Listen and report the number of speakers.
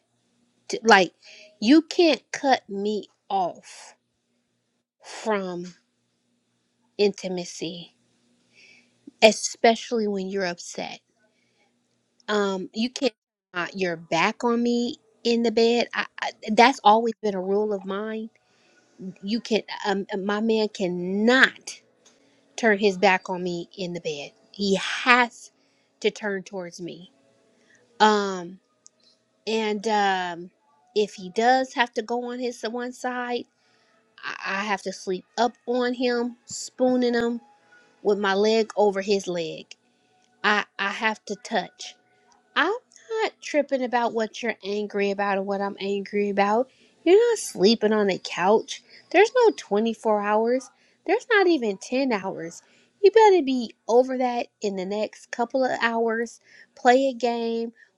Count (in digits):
1